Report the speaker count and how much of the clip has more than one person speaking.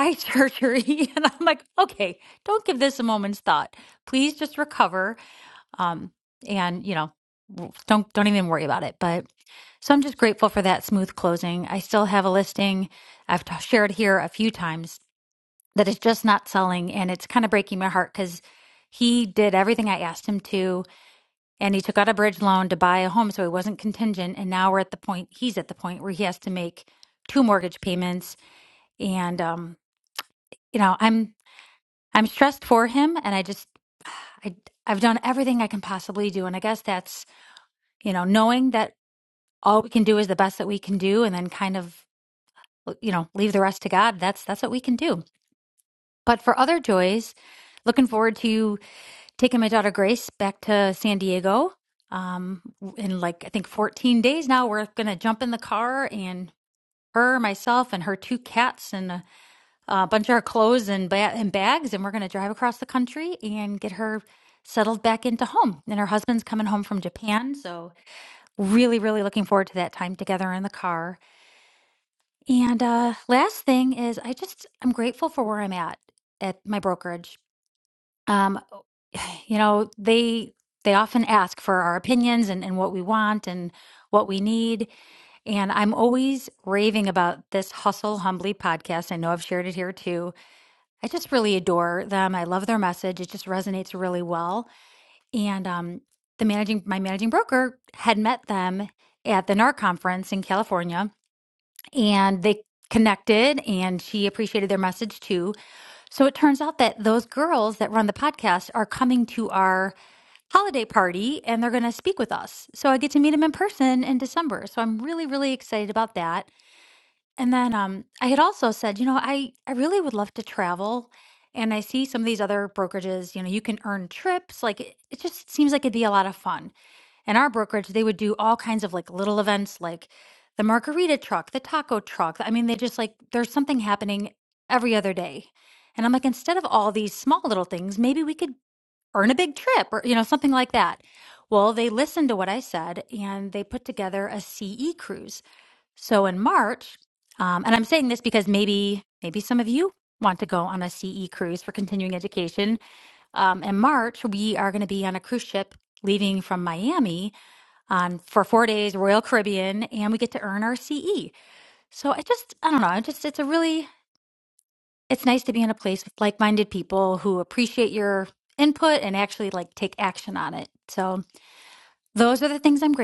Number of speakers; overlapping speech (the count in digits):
1, no overlap